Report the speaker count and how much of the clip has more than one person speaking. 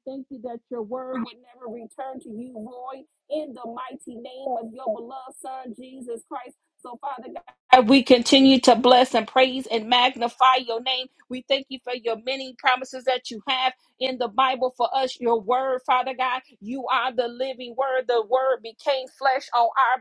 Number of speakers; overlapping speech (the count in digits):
1, no overlap